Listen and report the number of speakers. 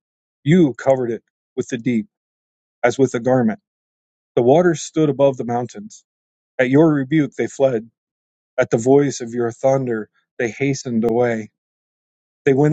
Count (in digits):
1